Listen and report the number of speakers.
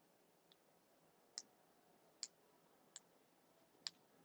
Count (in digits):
0